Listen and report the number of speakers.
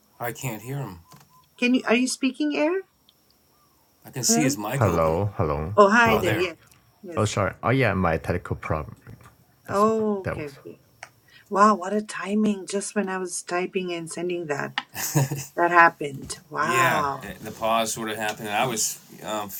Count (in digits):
3